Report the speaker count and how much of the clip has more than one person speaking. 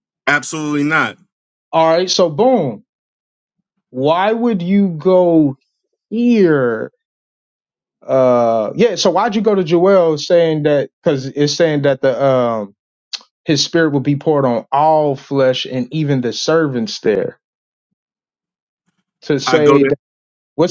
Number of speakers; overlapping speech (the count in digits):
2, about 2%